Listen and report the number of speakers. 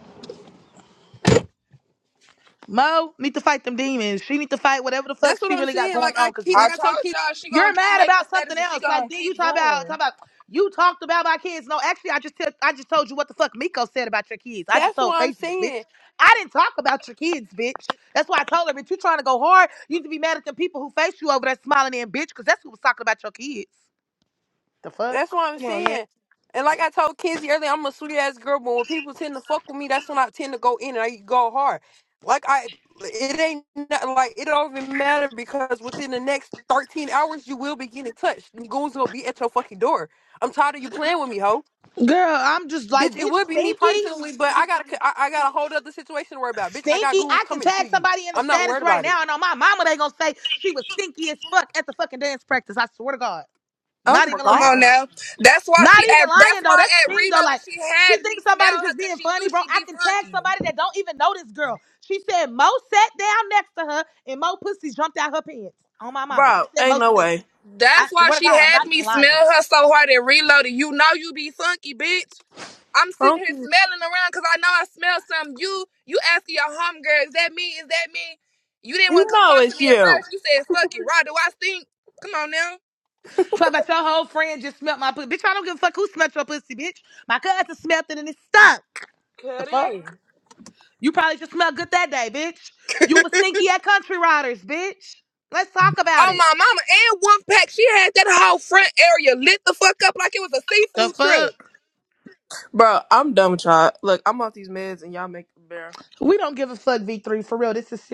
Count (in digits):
4